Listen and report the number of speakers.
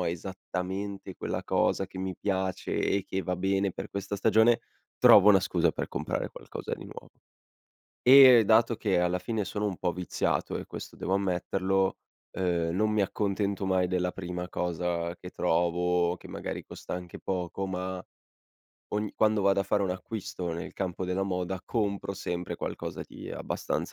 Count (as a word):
one